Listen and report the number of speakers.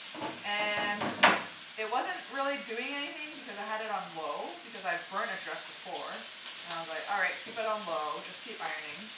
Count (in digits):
1